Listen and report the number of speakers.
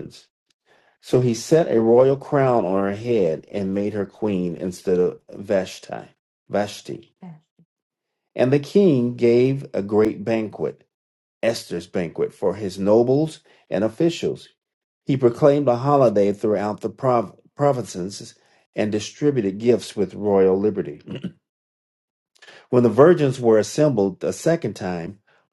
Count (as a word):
one